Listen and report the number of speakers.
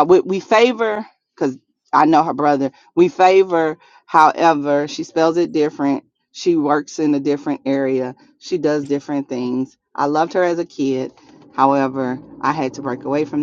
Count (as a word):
one